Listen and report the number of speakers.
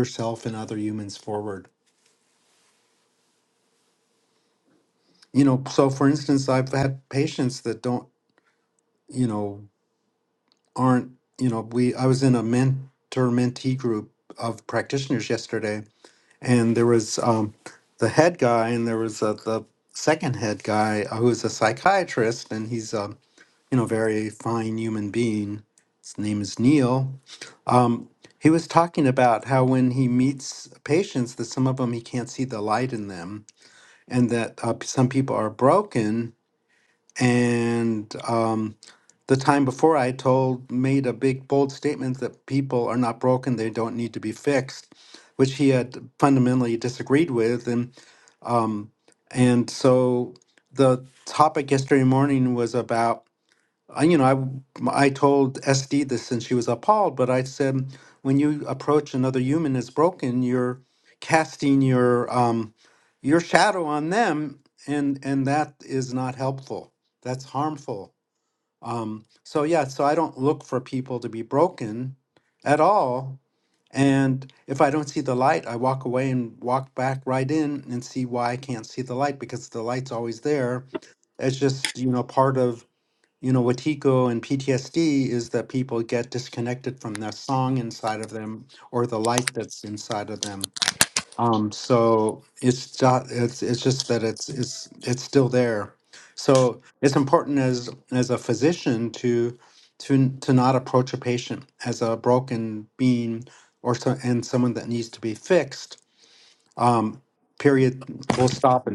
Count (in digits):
1